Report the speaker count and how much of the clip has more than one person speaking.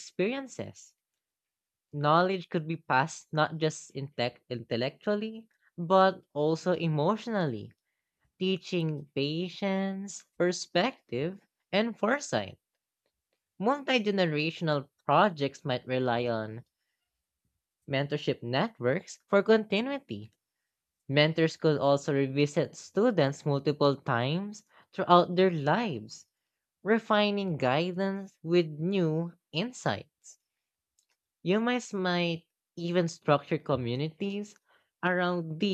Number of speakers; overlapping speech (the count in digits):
1, no overlap